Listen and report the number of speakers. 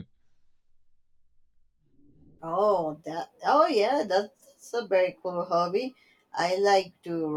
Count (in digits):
1